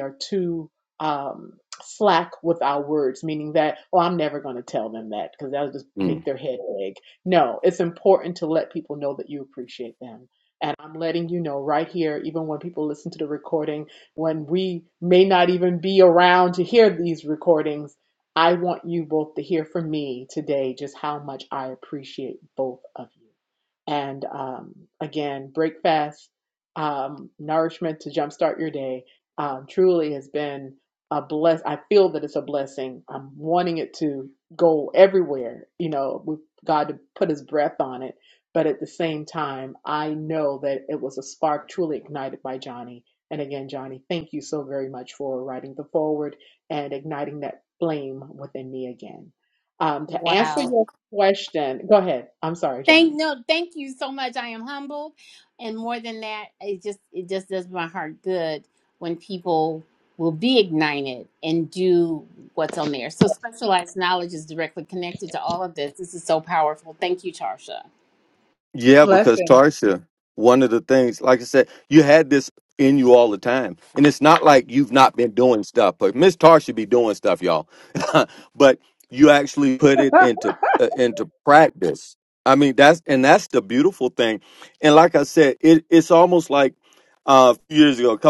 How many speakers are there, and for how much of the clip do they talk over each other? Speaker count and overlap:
three, about 2%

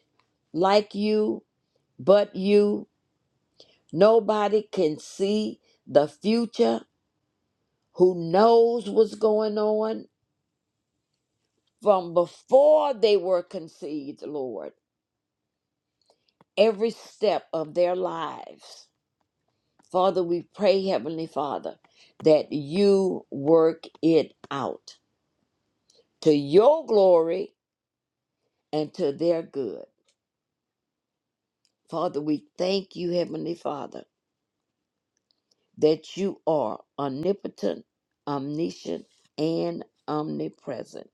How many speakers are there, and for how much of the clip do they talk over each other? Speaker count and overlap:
one, no overlap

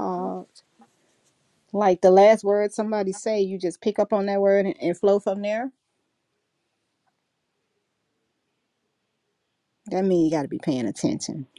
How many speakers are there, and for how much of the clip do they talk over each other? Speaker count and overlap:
one, no overlap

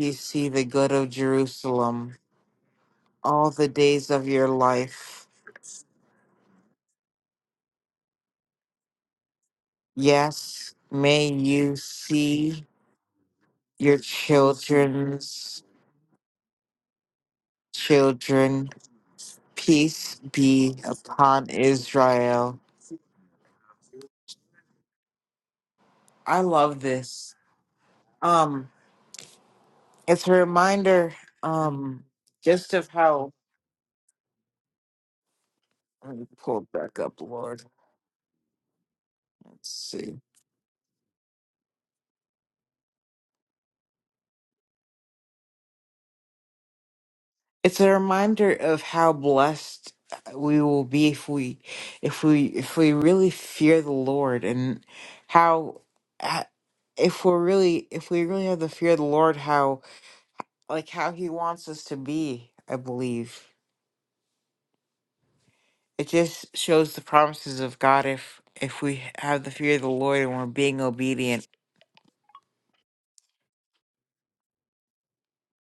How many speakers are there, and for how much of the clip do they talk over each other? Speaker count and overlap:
one, no overlap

